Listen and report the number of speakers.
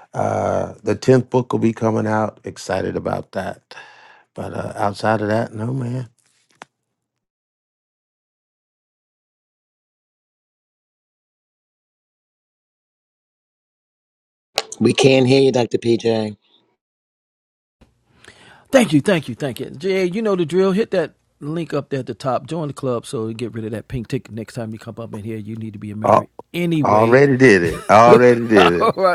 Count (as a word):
three